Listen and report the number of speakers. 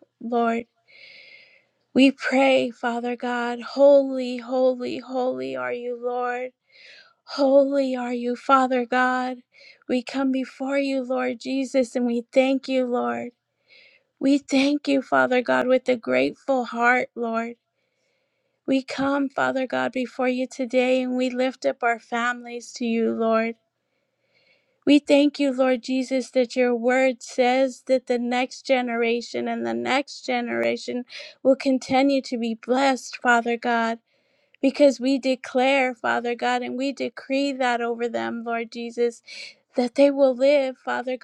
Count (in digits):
1